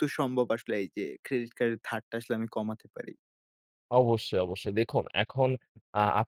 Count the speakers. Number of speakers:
two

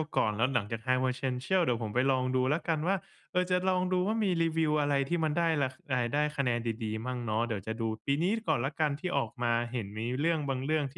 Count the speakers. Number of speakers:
one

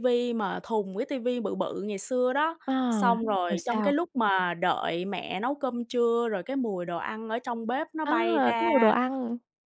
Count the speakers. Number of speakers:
two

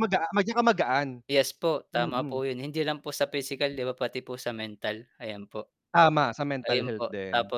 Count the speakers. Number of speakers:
two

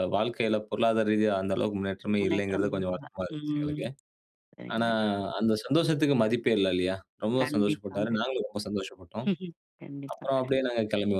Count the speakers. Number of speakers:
two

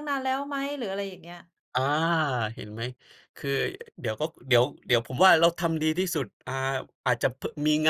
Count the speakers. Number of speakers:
two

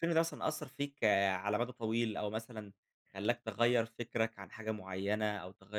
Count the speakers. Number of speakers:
one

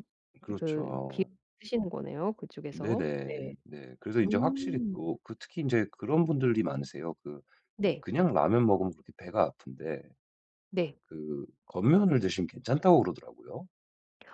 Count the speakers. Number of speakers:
two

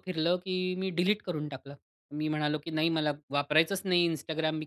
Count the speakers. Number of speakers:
one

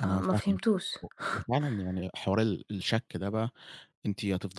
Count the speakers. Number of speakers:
two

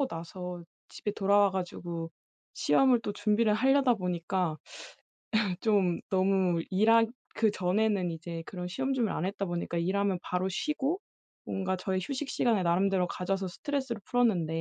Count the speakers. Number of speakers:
one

